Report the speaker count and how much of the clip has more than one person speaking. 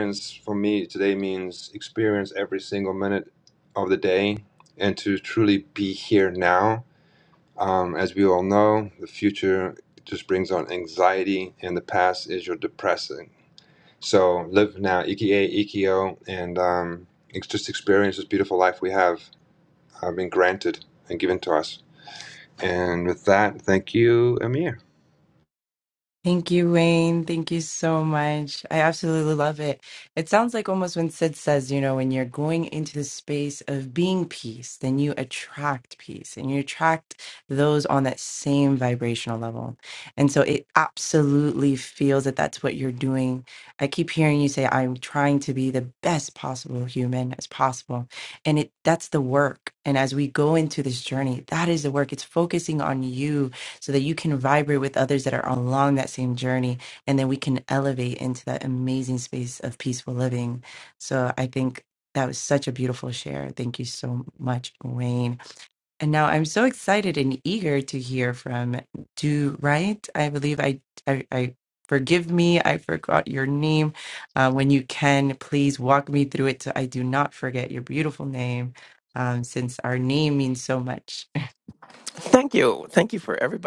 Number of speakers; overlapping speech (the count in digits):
3, no overlap